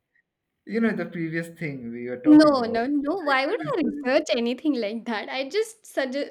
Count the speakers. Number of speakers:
2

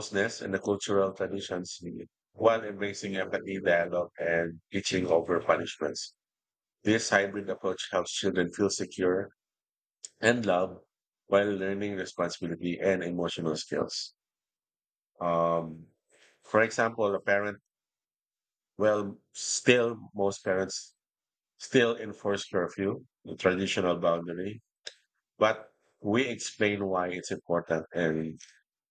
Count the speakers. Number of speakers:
1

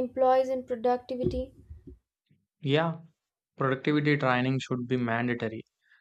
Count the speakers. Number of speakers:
2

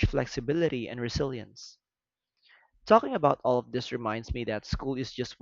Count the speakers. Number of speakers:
1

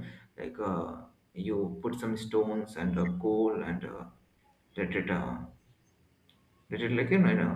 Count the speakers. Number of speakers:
1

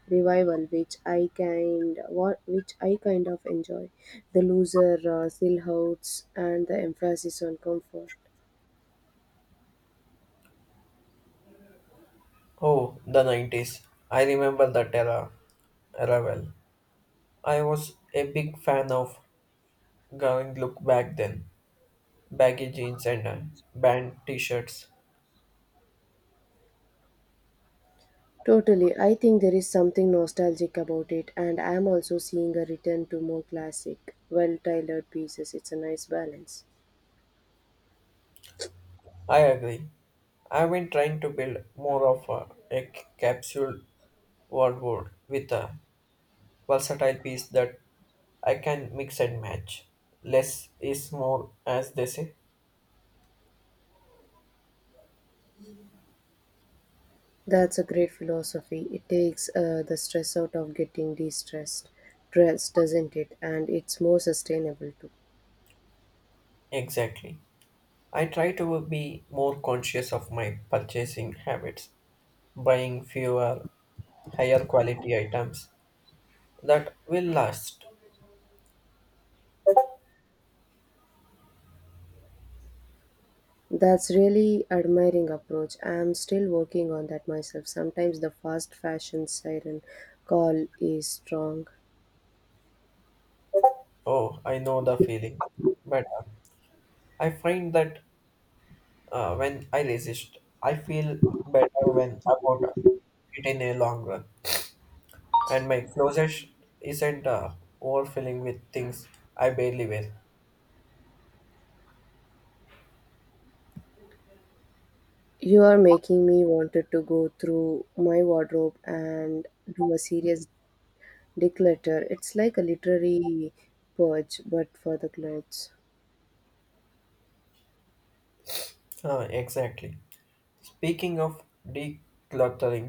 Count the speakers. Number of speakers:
2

